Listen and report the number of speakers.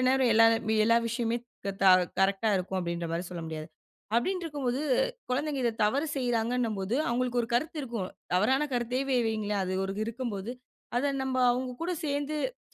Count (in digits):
1